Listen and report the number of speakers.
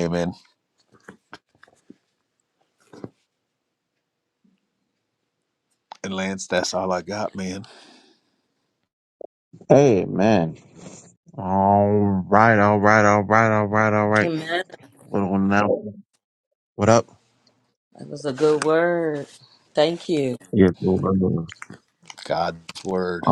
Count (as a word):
three